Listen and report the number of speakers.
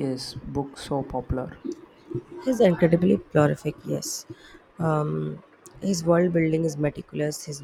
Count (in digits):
2